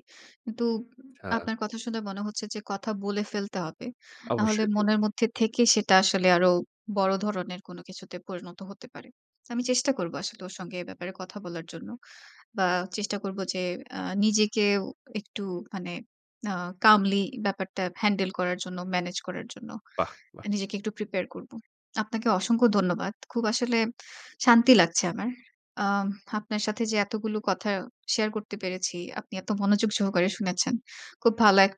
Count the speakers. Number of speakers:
2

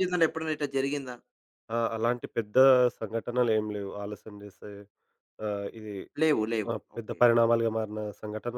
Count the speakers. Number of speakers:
2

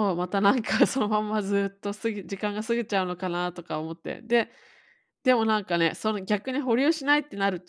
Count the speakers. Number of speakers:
1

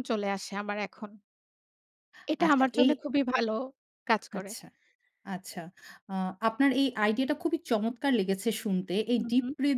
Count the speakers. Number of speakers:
2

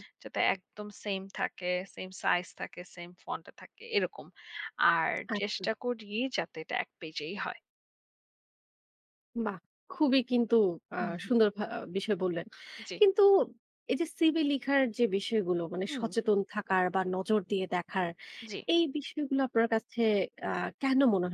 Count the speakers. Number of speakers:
2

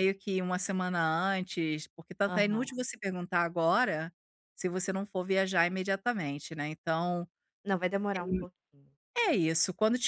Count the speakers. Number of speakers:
2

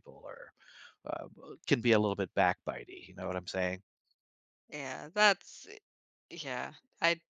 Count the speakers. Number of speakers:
2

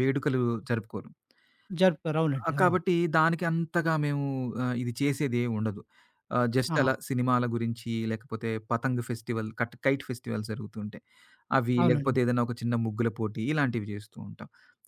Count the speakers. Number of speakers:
2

